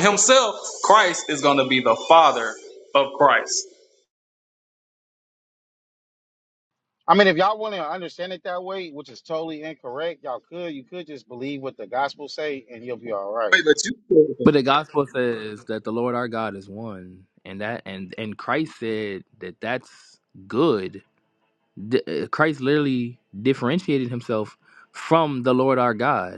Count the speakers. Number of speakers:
three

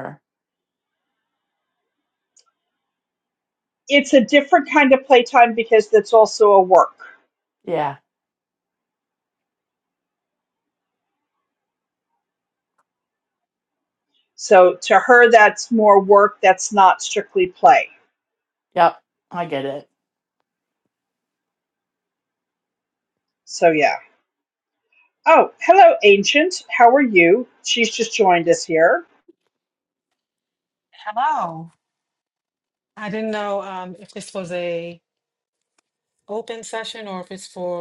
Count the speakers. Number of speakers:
three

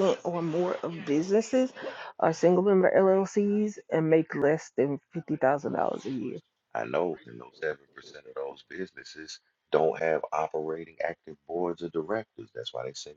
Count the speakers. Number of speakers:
two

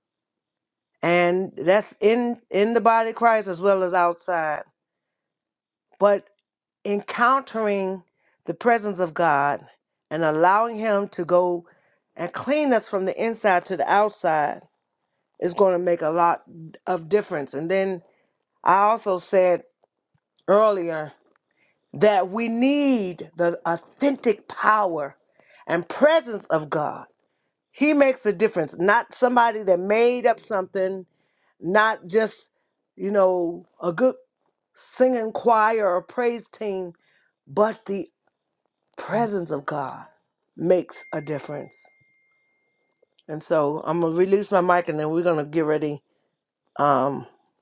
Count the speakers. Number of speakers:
one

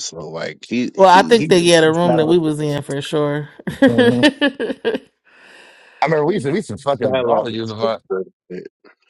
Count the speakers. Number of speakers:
three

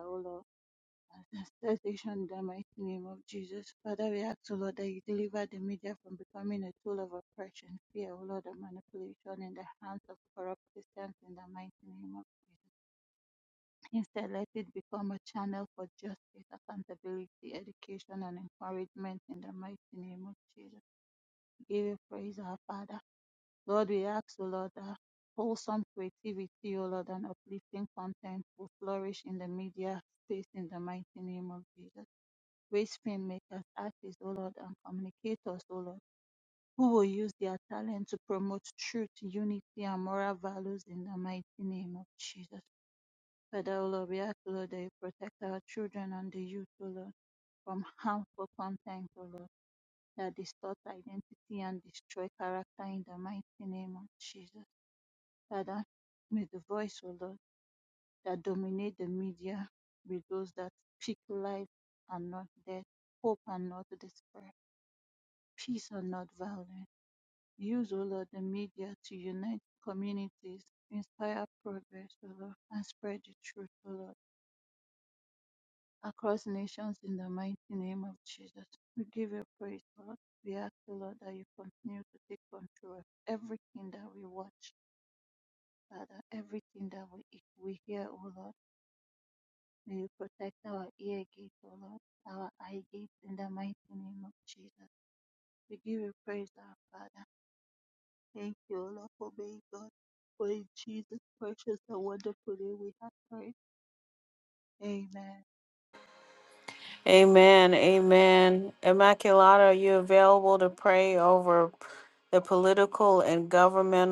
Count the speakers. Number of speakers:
two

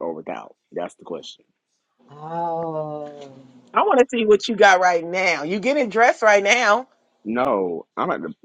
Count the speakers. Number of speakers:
three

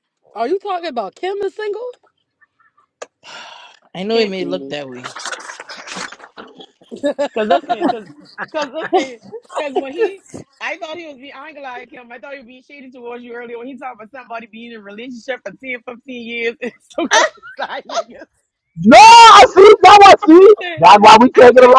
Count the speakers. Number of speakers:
four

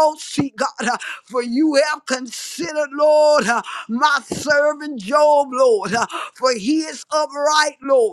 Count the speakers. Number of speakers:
one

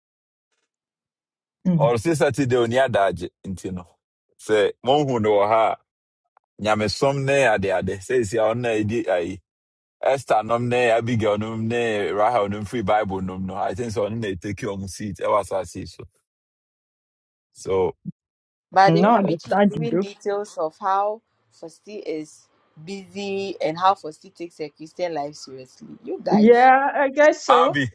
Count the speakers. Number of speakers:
three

